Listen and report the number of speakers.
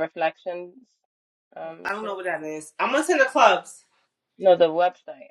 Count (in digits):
2